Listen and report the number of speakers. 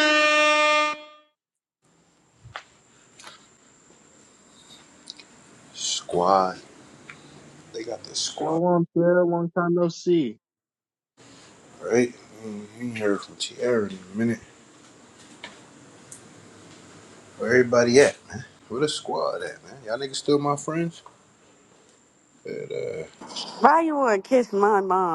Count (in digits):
3